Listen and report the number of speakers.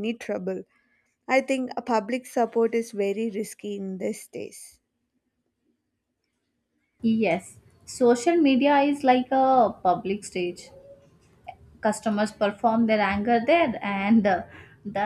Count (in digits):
2